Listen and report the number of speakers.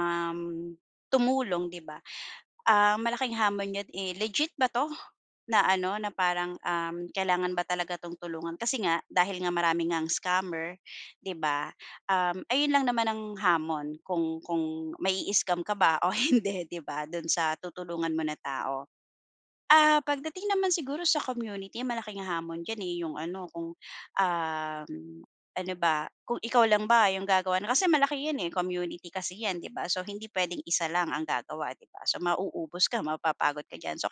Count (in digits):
1